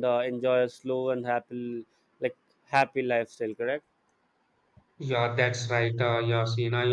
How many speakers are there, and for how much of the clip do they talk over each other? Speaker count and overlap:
two, no overlap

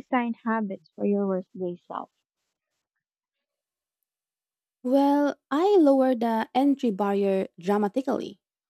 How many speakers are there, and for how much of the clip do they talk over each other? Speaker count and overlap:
two, no overlap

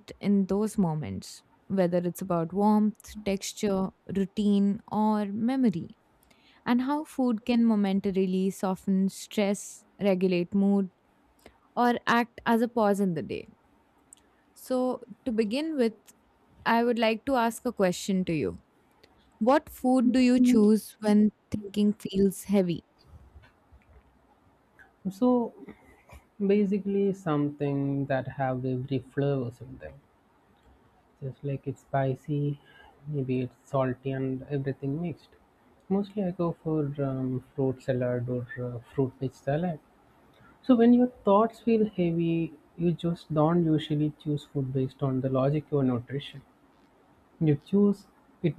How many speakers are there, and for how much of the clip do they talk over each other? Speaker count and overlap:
two, no overlap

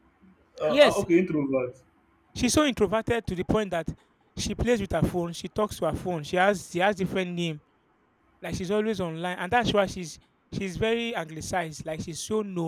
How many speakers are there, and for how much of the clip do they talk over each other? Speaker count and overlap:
two, about 3%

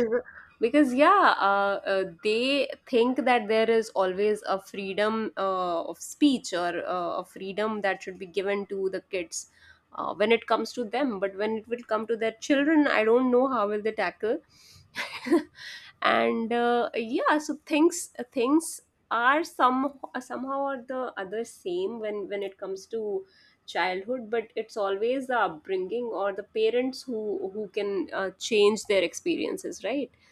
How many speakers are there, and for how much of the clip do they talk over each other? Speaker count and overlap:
one, no overlap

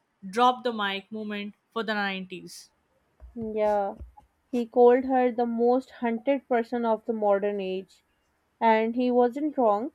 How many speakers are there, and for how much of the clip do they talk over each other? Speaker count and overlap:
two, no overlap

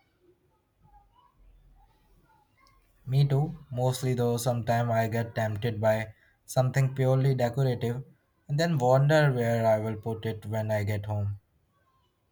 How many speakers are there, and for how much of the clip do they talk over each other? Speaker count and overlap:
one, no overlap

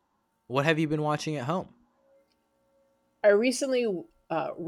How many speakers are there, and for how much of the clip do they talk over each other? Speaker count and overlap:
two, no overlap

